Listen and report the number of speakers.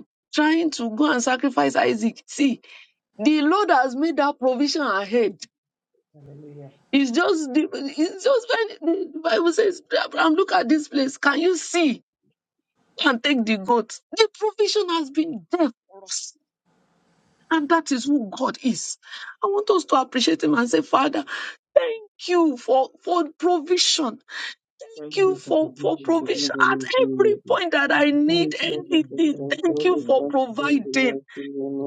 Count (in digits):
3